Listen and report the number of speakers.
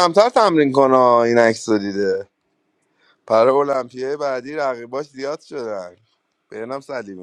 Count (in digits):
1